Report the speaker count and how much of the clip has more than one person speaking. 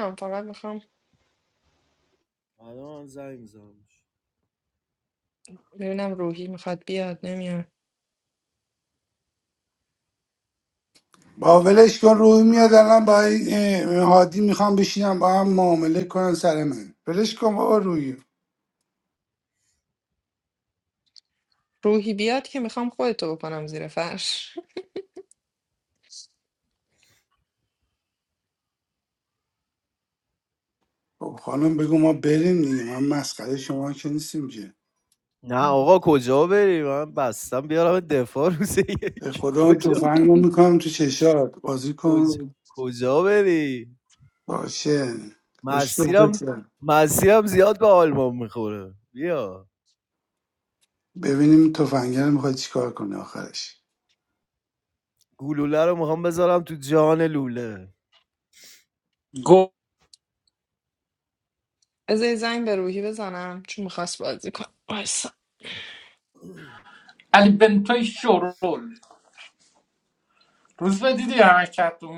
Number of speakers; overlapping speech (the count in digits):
4, about 2%